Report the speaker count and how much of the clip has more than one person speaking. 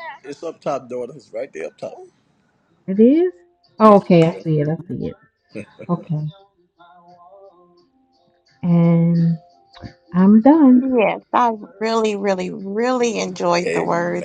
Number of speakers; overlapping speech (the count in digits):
3, about 7%